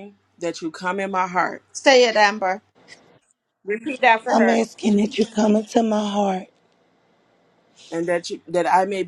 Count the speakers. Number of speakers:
three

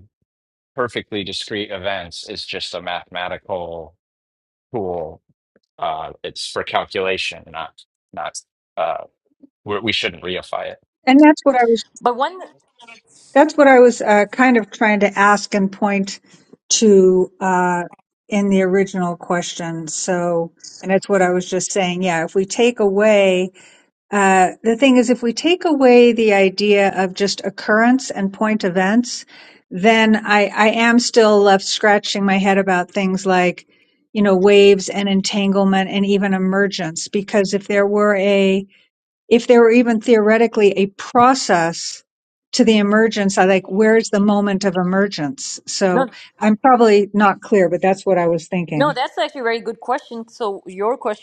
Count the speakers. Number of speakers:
three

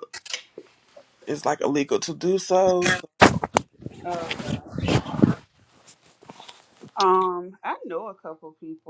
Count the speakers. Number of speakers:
two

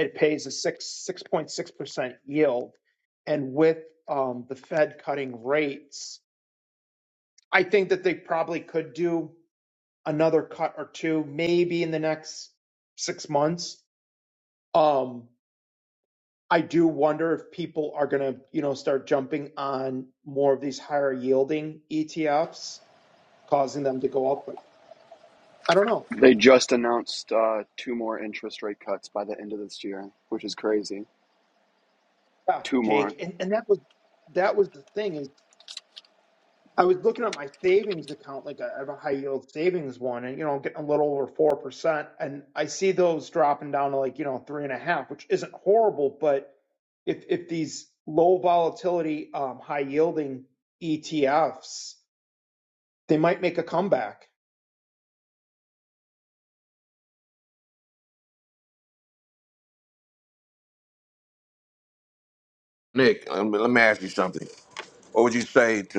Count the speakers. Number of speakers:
three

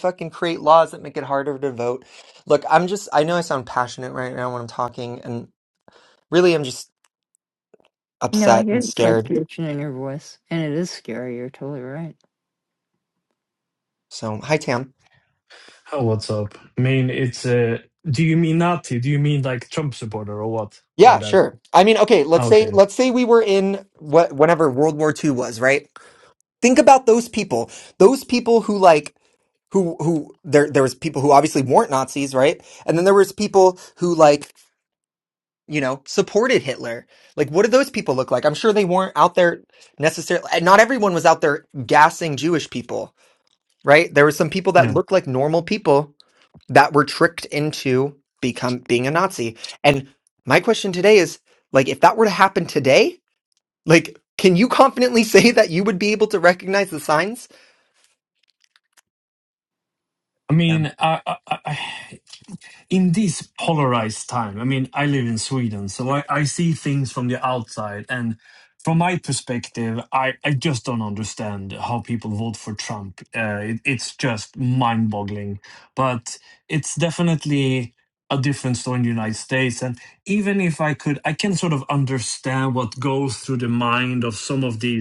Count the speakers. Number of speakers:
three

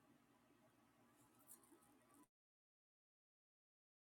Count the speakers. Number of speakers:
zero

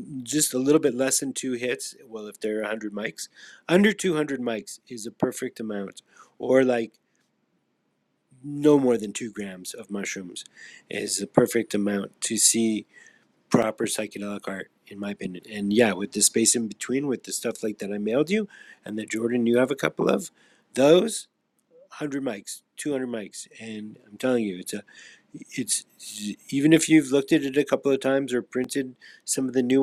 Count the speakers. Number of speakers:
one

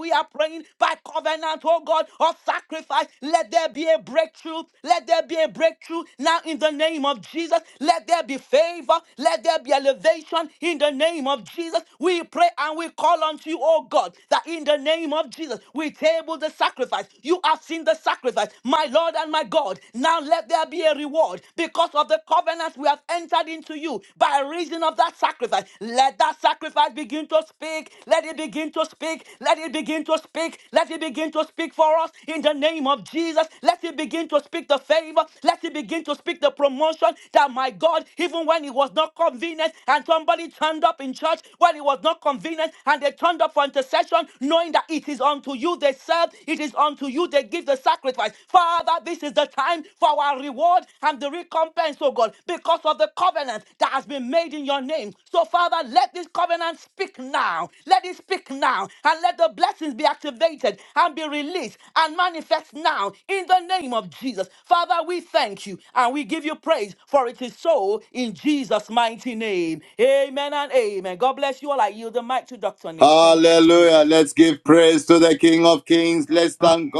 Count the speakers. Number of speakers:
two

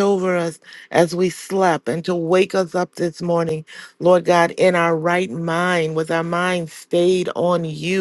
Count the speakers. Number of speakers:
one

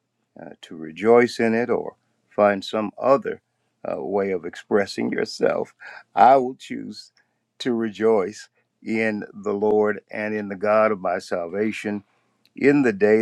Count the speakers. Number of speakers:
one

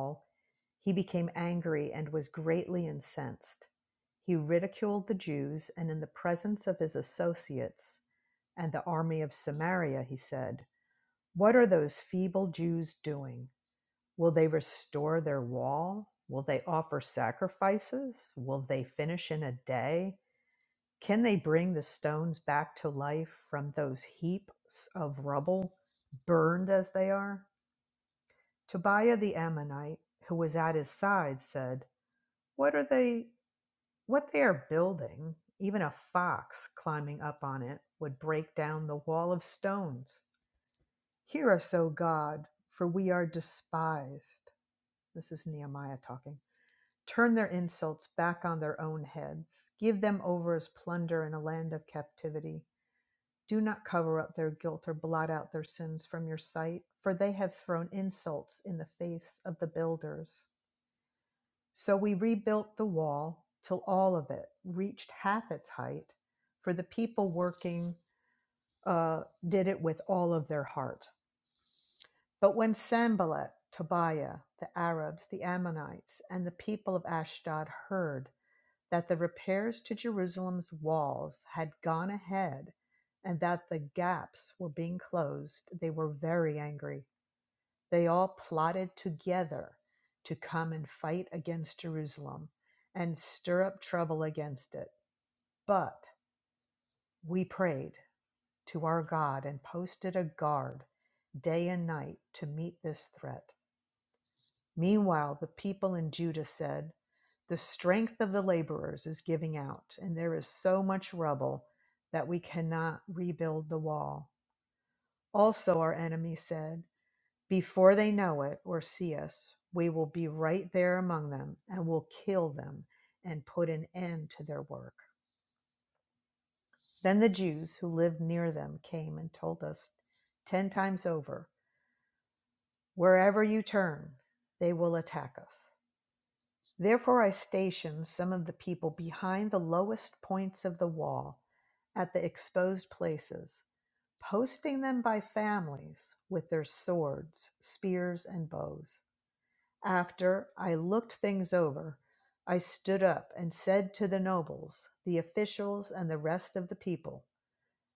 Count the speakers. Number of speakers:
one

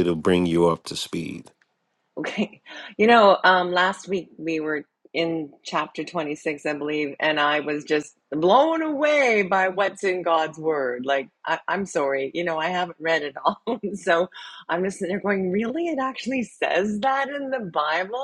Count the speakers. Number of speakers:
two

